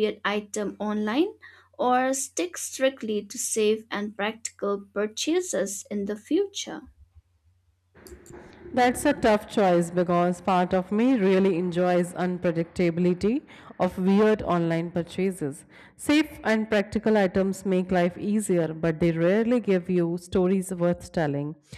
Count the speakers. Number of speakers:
two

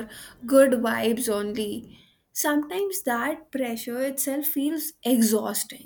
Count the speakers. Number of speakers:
one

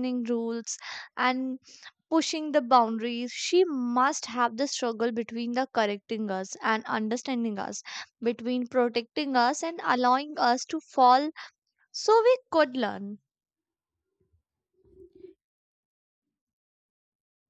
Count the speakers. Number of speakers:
one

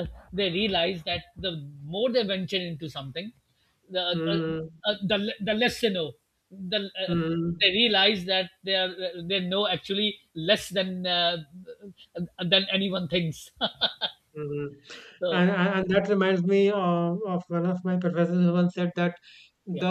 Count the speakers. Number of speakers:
two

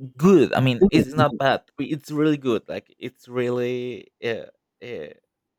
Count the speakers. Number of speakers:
one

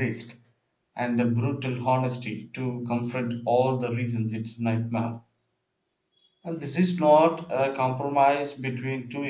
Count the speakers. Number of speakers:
one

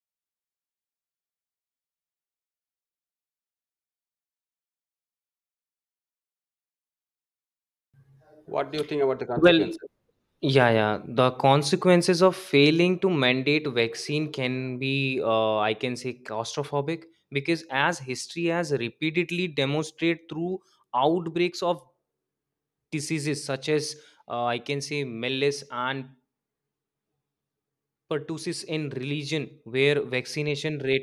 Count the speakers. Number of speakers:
two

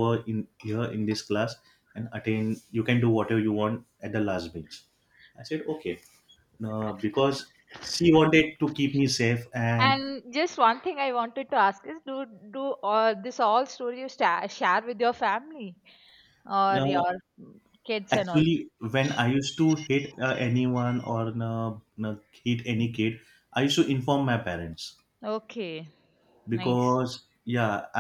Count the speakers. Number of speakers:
two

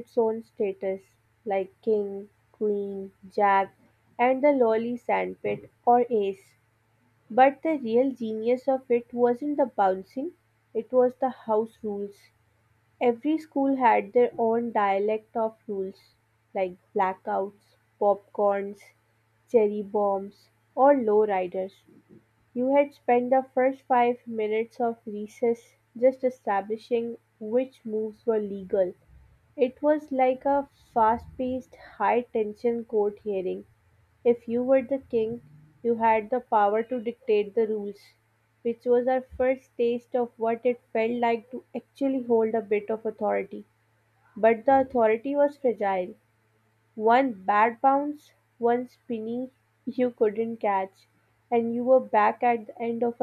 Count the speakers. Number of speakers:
one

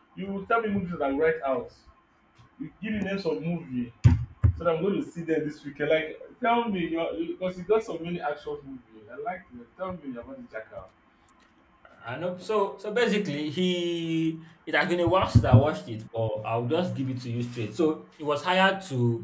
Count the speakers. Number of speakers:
two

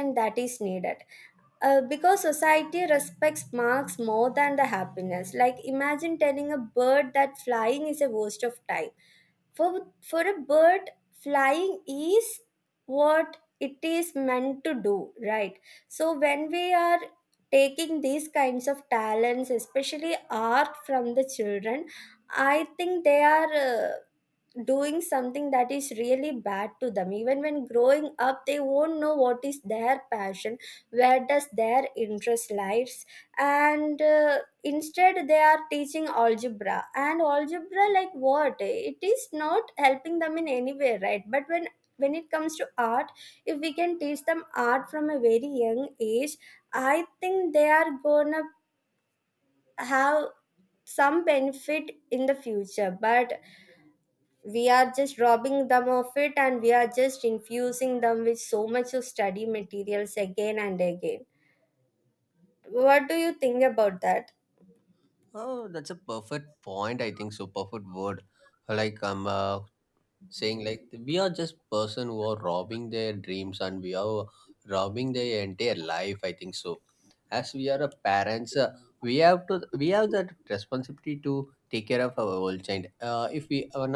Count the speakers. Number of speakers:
two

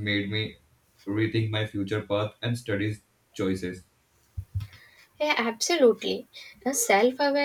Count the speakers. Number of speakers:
two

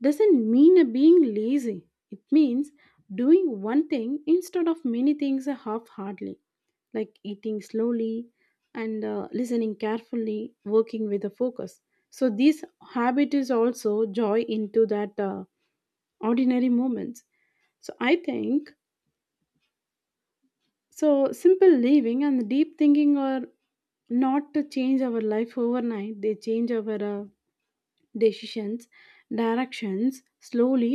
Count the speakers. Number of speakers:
one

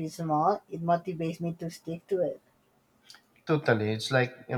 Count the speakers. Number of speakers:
two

